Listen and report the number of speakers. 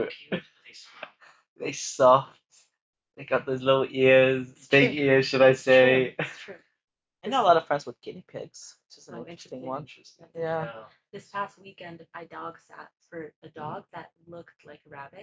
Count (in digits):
4